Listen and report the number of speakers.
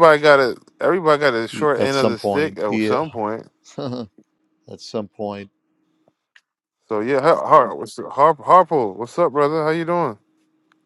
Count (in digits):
2